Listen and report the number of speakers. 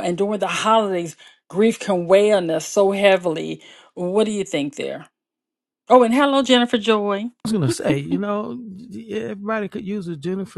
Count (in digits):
2